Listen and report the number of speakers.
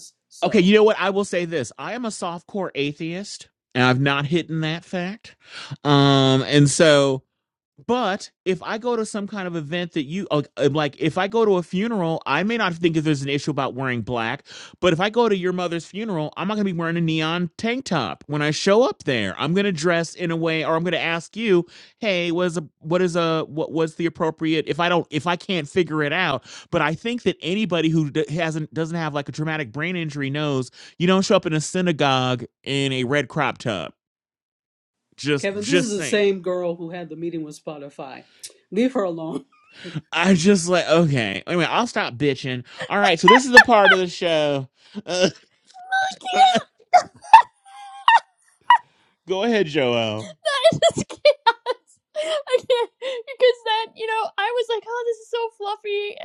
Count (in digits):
3